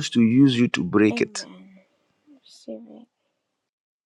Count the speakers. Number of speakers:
2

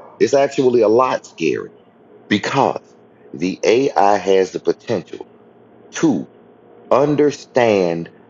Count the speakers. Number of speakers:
1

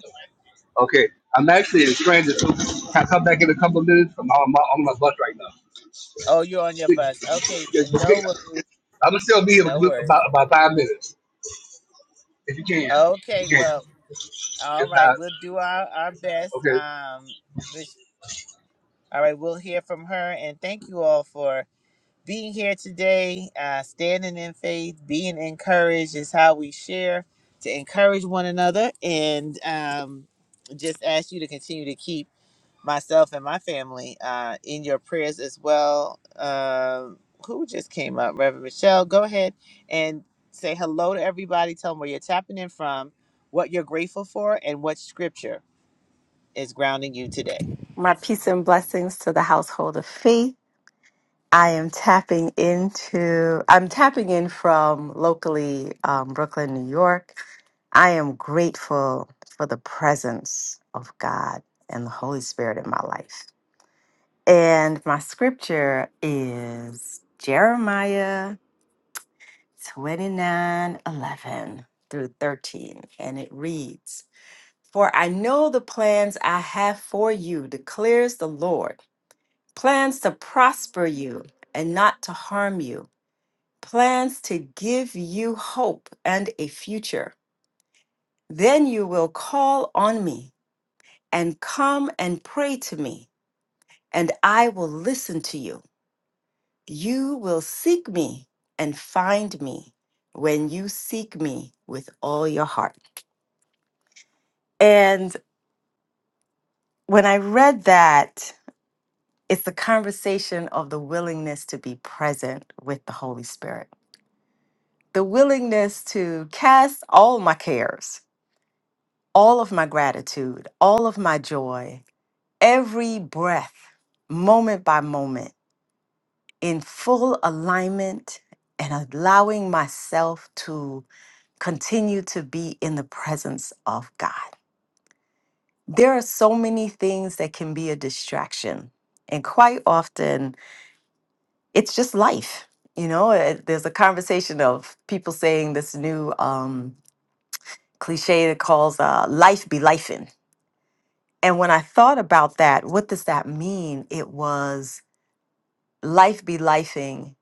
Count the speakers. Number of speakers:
3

